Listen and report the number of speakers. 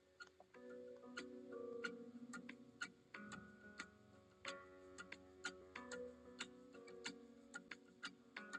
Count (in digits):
0